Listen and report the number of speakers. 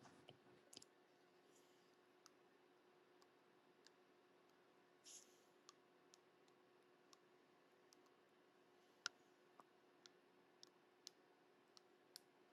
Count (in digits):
0